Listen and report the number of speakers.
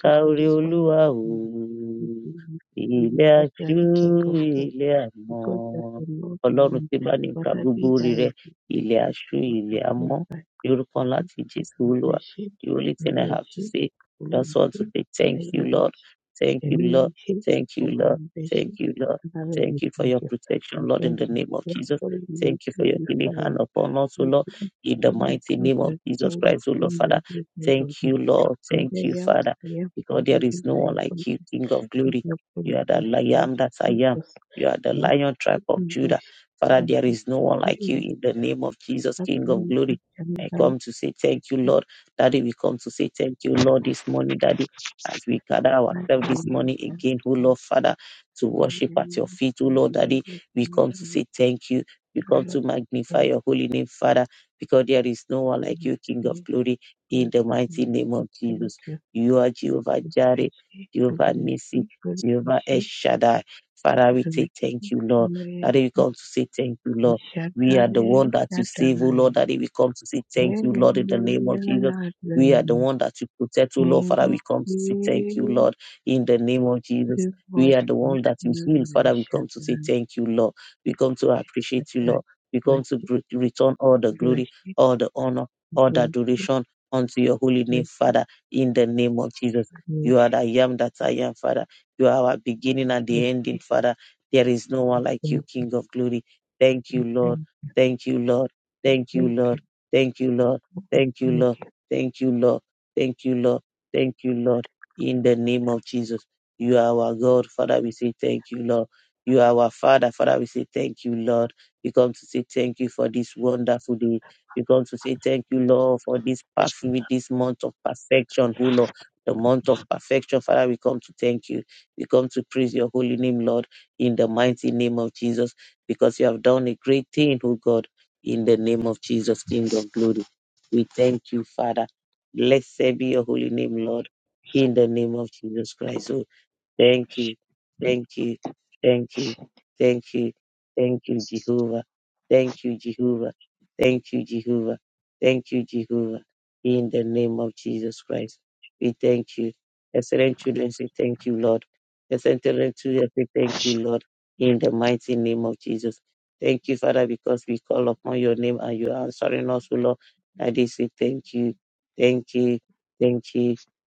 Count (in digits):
2